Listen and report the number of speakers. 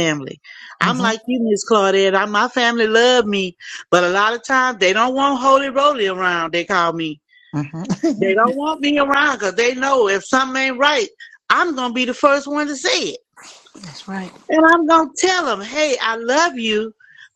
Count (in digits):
2